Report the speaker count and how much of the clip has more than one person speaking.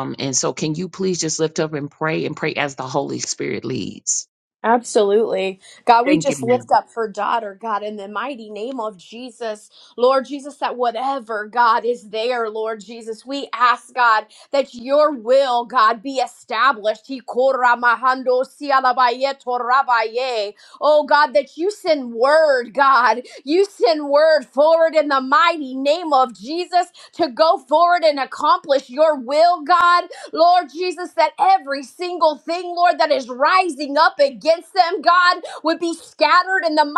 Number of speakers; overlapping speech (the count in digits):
2, about 1%